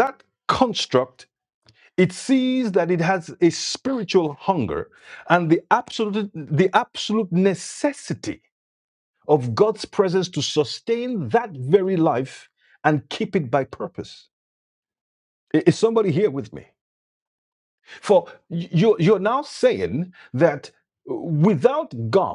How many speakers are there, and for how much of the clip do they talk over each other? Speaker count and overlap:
1, no overlap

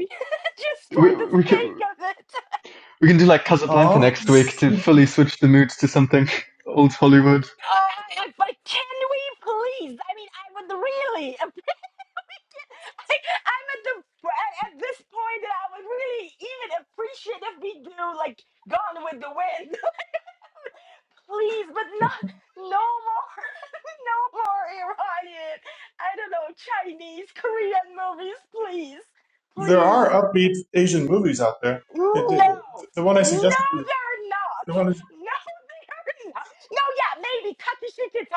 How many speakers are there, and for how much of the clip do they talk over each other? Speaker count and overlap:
3, about 8%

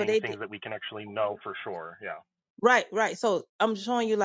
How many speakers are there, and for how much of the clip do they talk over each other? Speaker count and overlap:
2, about 8%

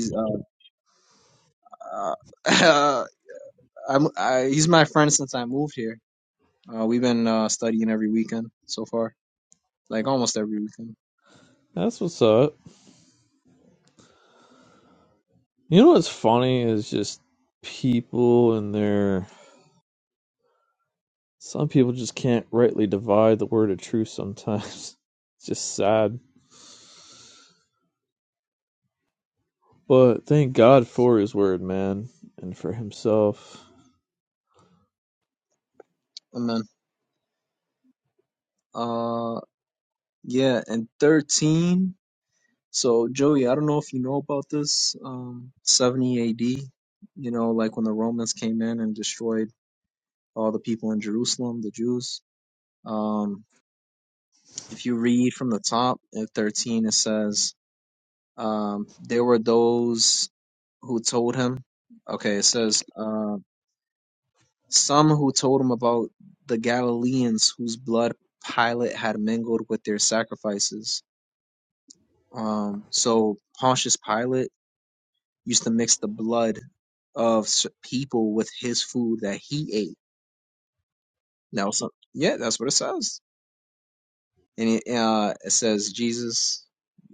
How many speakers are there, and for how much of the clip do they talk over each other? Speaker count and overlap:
2, no overlap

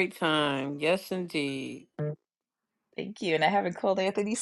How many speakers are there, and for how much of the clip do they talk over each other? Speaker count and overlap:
2, no overlap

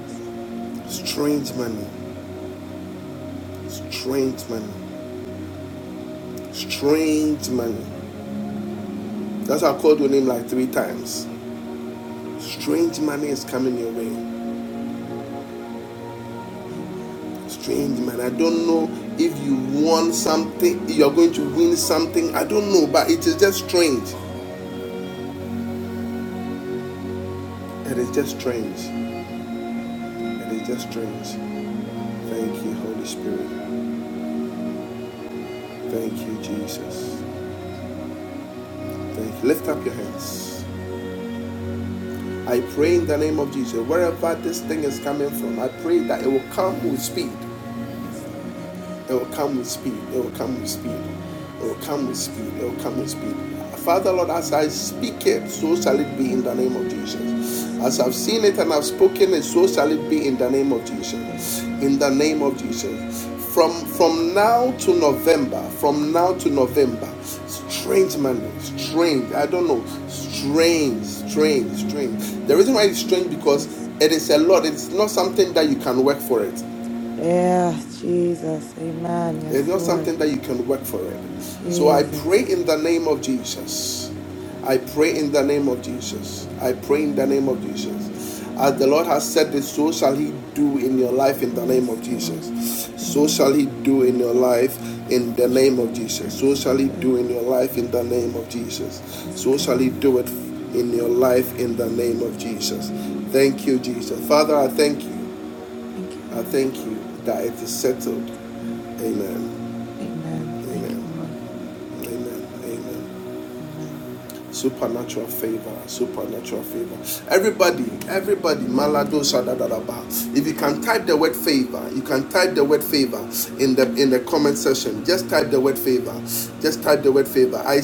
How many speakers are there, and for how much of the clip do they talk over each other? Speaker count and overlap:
2, about 5%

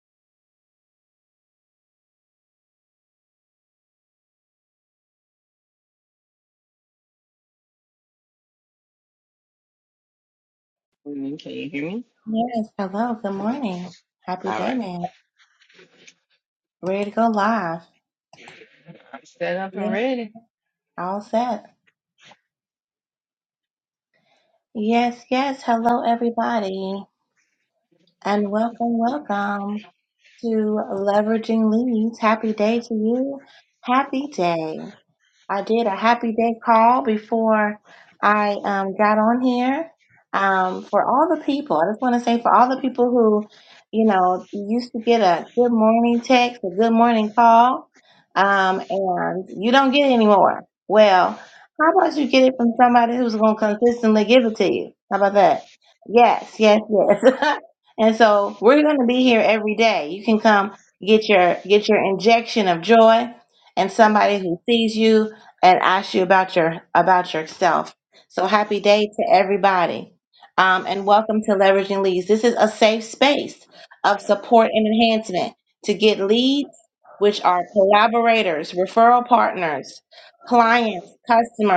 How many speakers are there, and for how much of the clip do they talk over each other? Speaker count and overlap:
2, about 1%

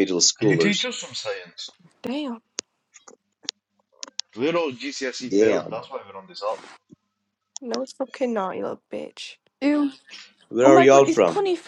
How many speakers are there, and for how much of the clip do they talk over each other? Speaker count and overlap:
4, about 14%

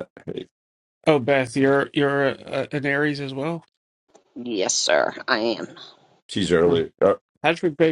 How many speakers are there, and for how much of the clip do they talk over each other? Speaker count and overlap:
3, about 2%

